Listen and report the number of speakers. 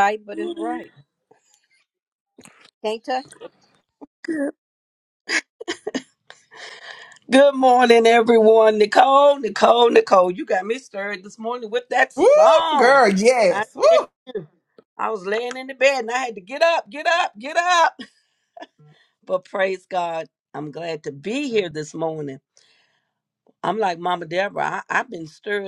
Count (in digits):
3